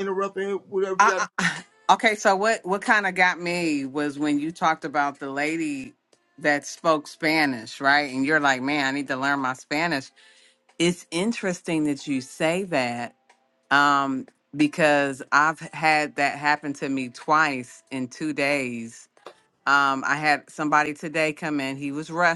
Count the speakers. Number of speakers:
two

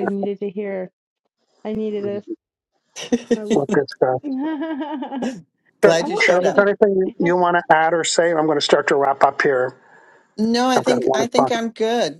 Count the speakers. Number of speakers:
three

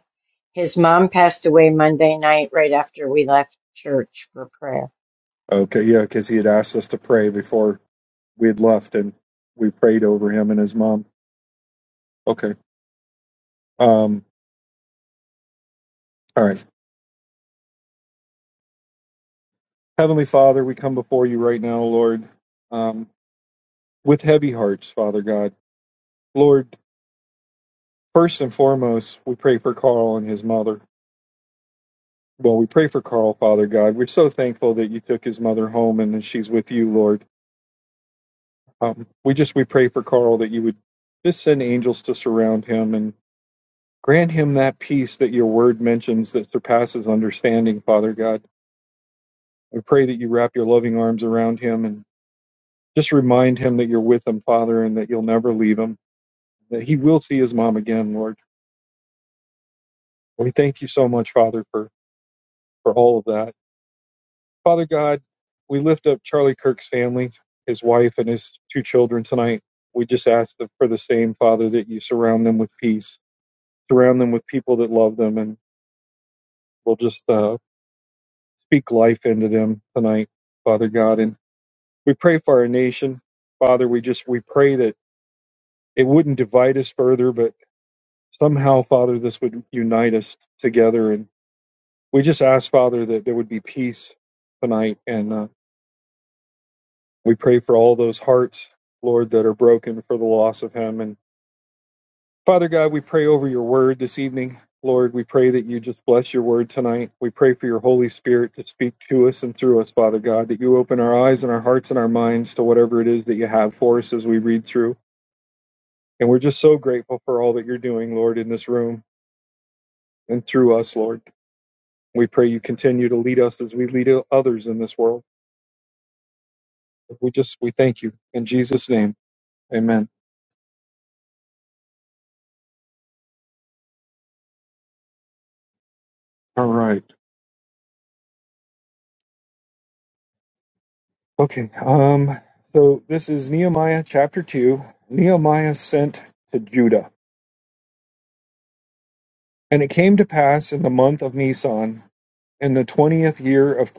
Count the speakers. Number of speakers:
two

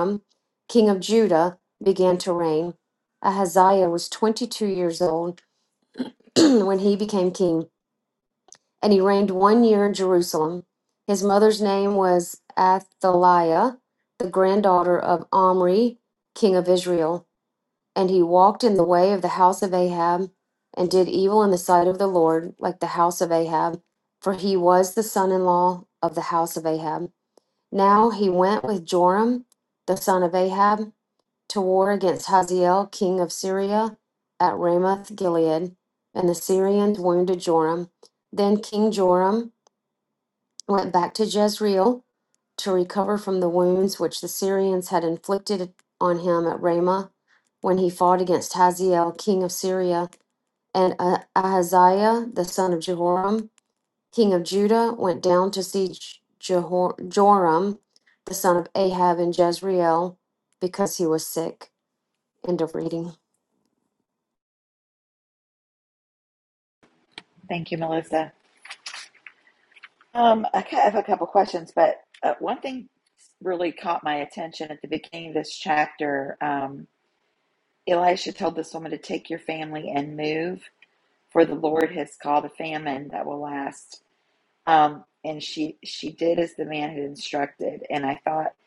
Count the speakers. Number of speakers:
two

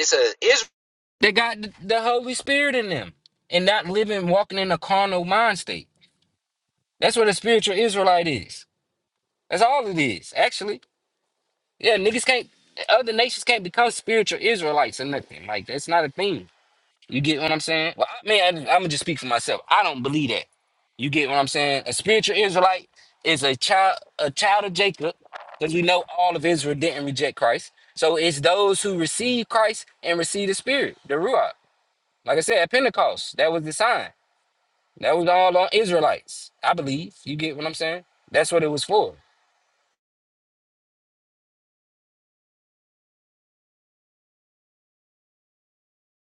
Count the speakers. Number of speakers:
one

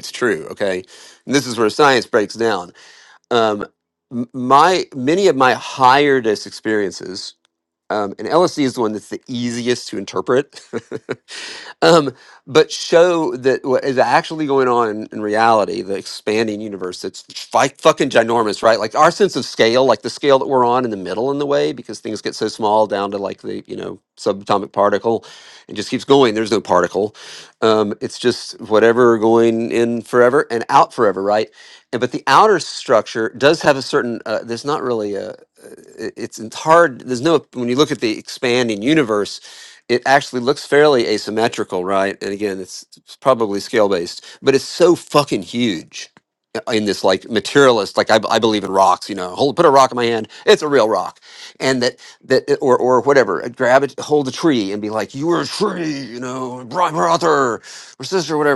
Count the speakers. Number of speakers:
one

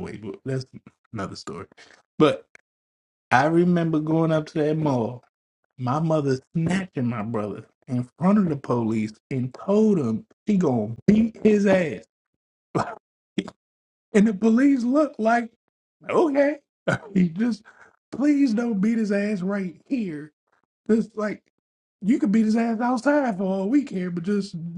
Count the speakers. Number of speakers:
one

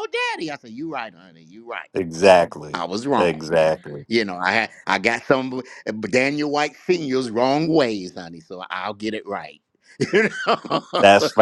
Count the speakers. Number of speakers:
two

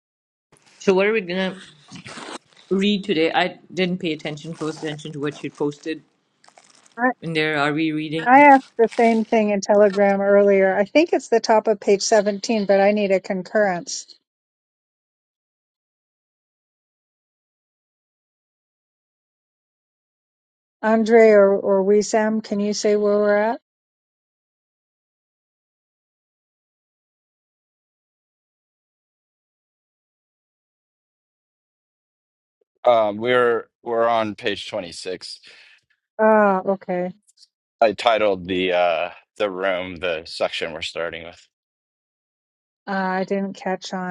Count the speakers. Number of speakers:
three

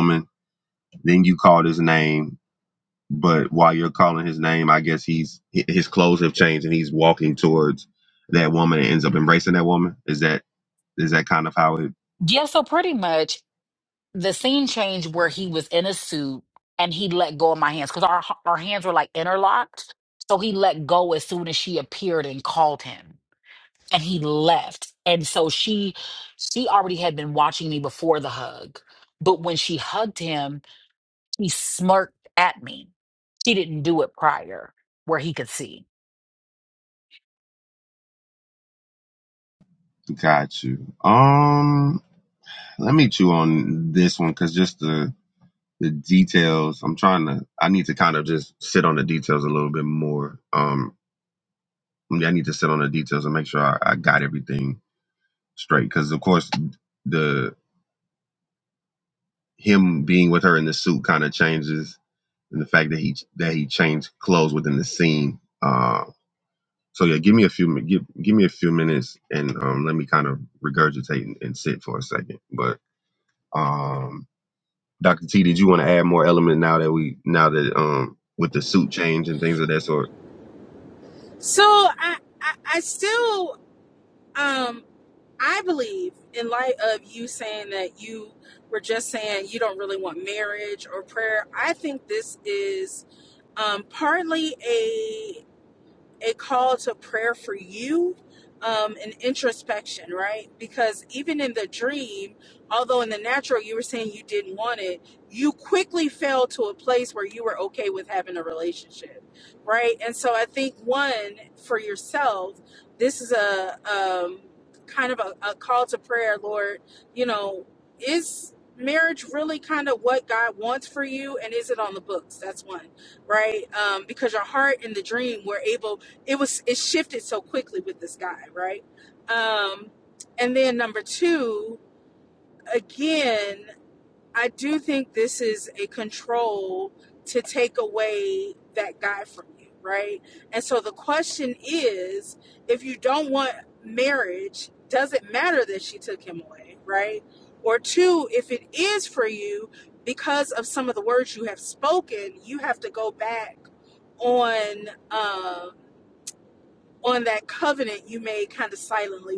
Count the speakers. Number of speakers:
three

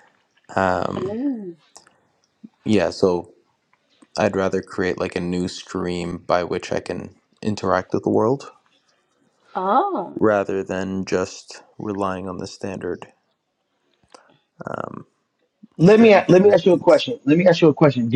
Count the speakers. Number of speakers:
three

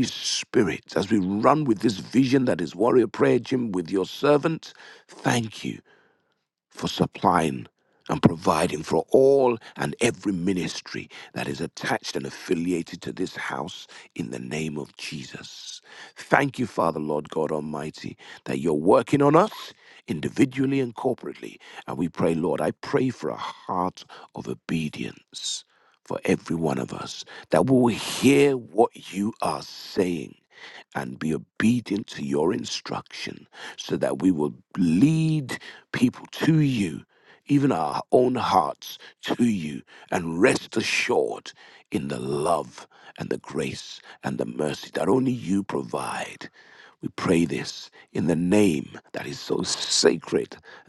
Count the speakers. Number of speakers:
one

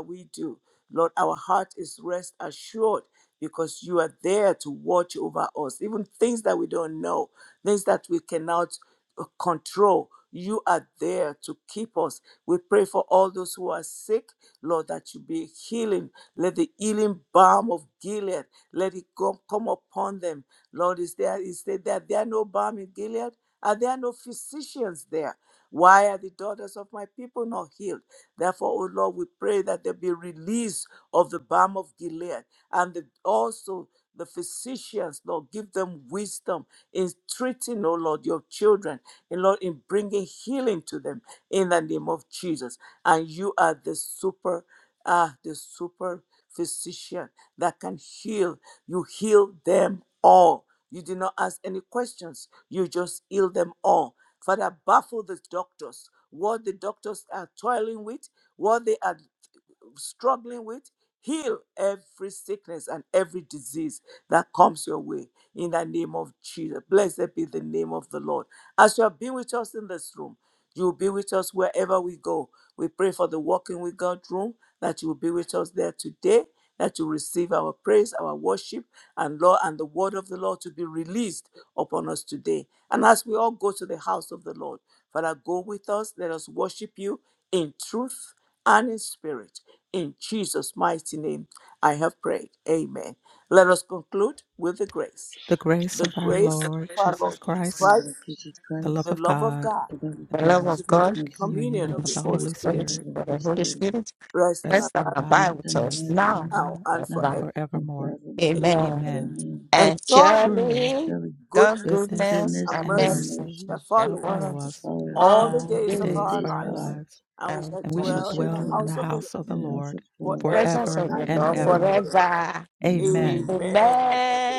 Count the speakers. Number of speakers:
four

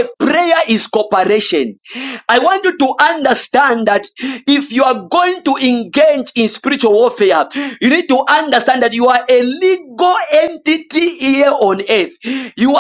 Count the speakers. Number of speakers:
one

